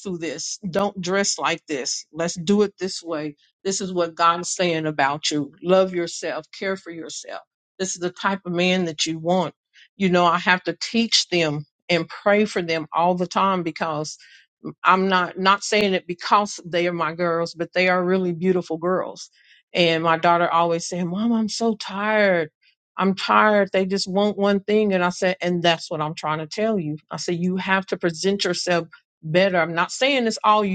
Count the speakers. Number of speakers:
1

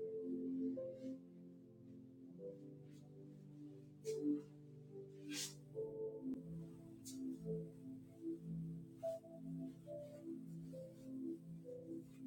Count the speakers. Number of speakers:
0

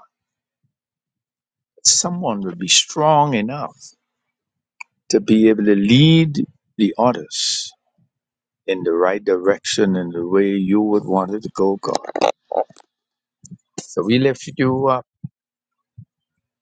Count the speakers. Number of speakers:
1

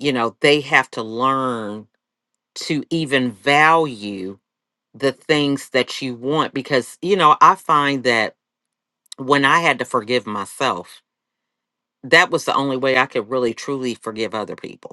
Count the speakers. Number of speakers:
1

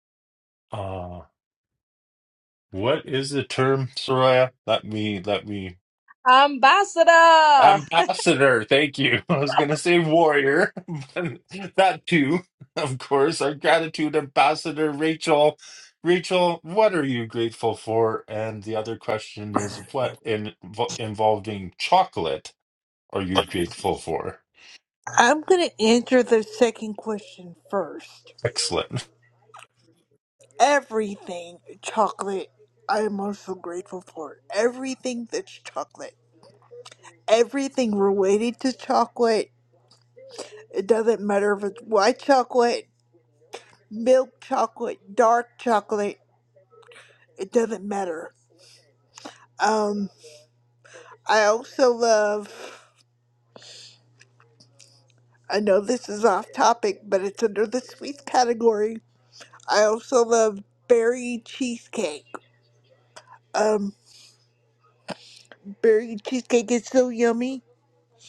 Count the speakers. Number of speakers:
3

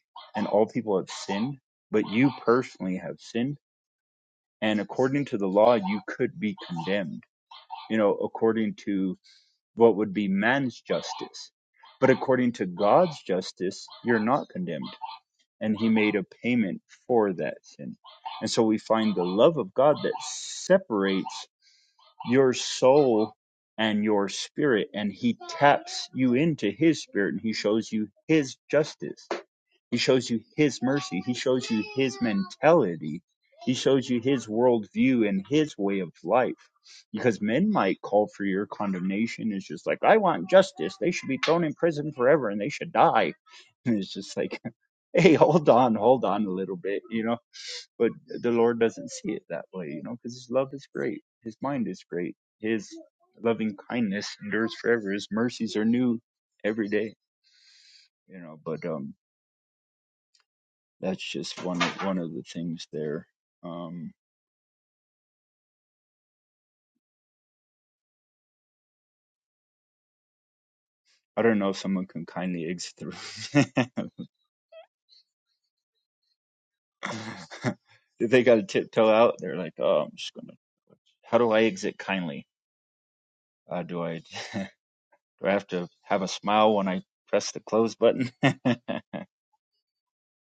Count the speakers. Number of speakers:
1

